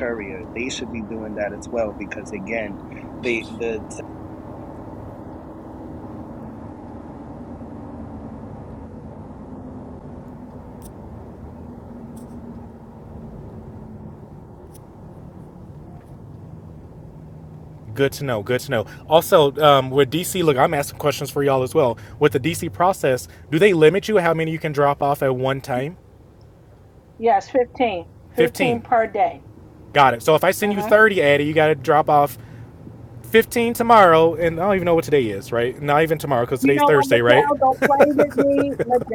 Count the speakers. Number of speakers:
3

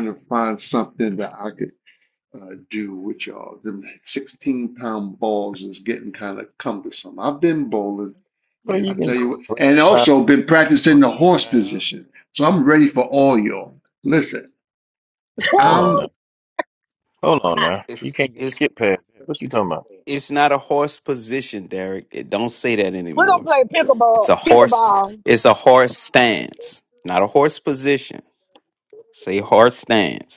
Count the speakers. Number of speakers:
4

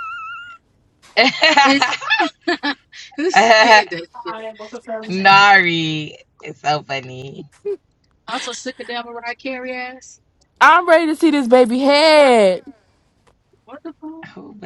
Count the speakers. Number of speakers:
3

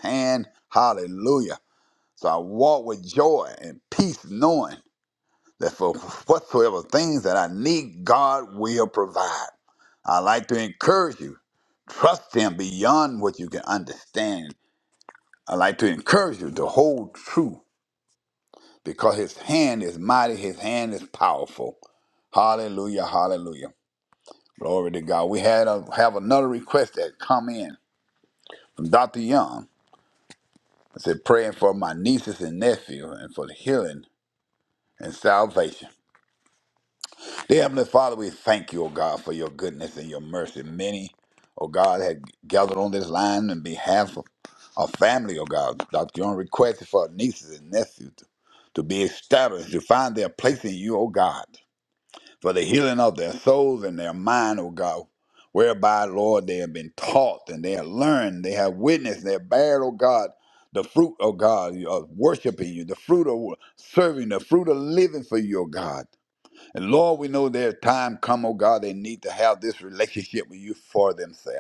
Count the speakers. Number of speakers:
1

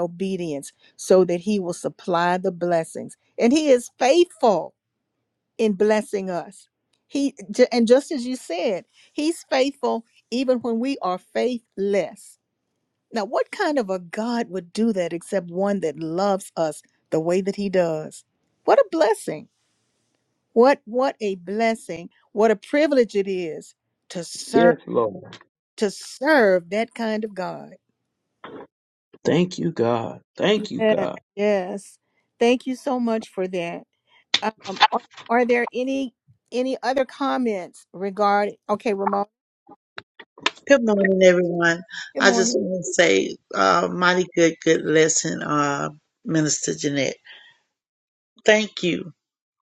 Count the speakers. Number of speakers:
3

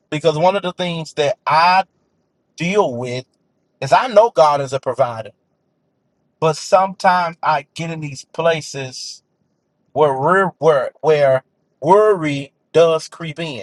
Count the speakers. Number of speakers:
1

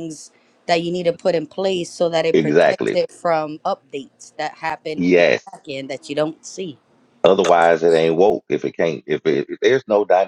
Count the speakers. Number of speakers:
2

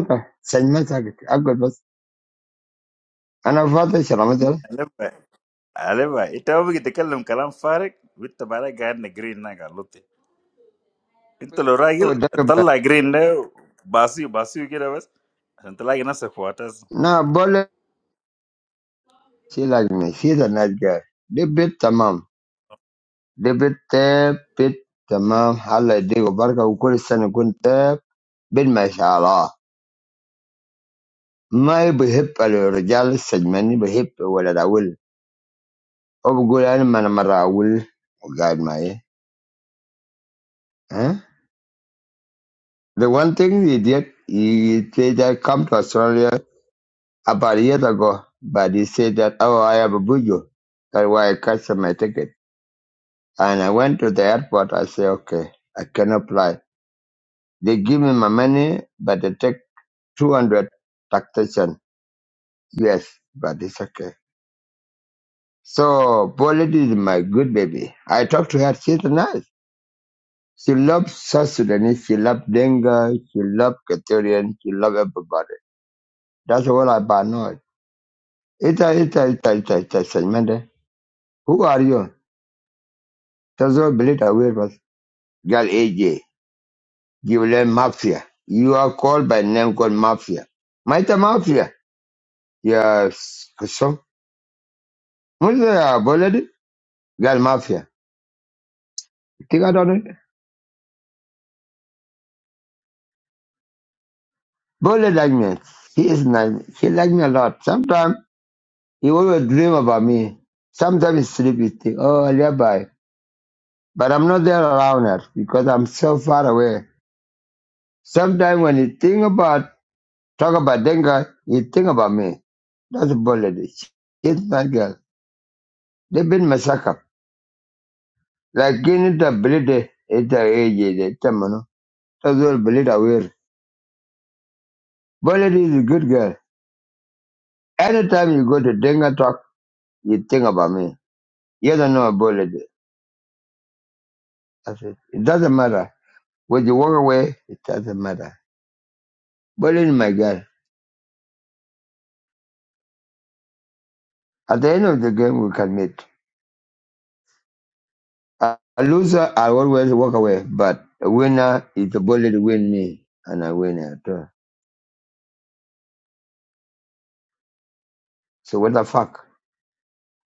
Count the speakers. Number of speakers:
2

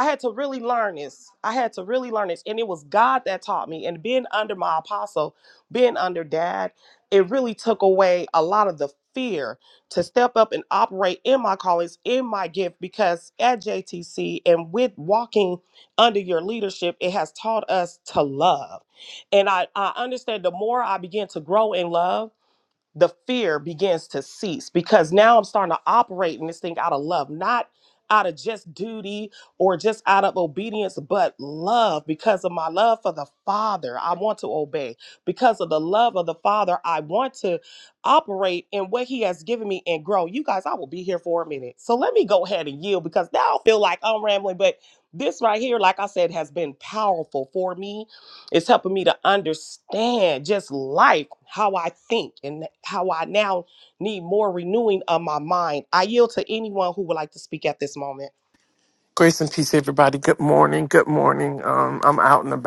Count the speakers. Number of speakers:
2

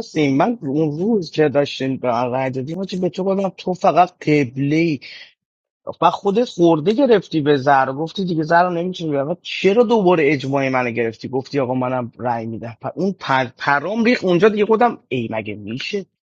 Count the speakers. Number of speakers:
1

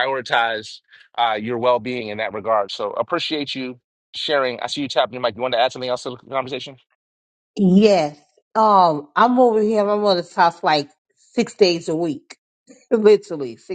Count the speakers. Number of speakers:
2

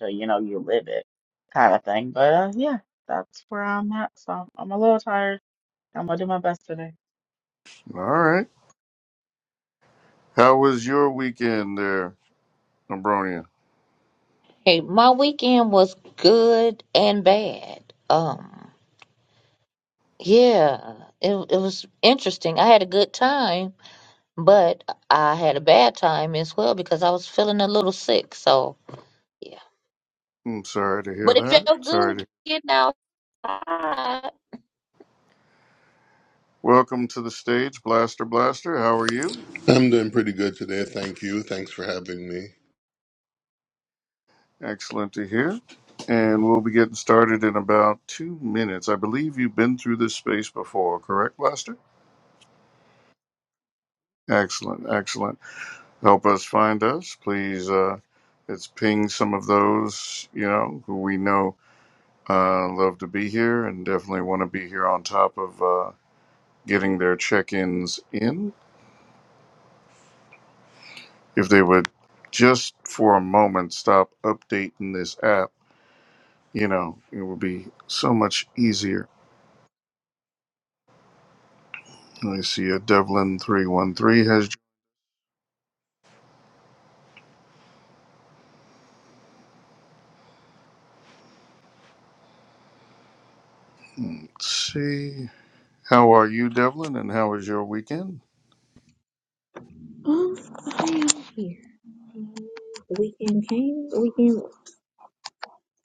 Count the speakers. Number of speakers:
5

